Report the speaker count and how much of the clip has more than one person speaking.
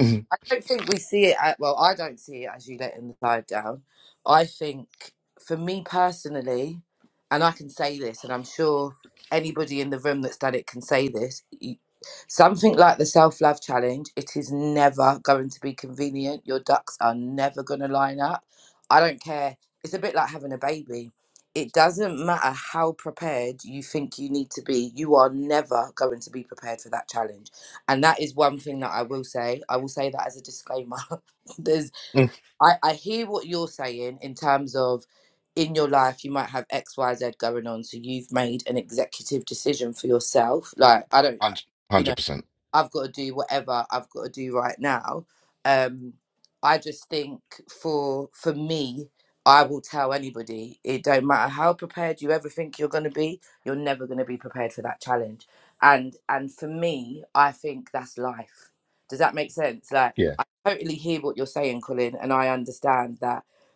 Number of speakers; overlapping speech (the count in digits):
2, about 1%